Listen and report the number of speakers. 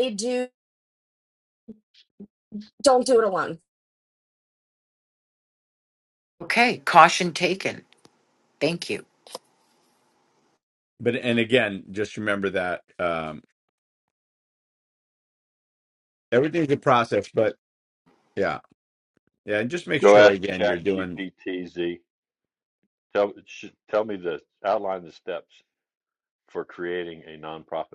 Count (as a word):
four